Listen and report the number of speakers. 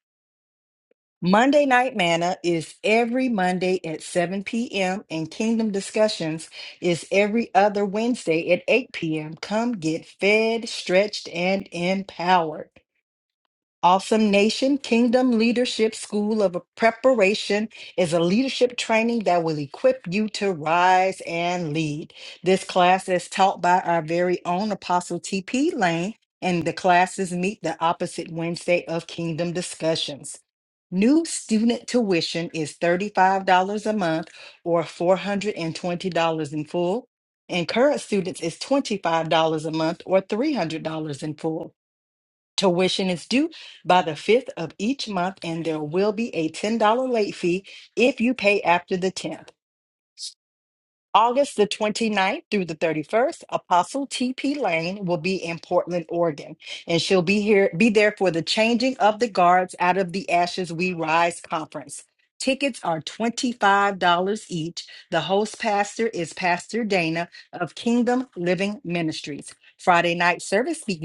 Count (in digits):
1